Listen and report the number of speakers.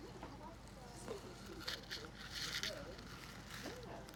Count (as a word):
zero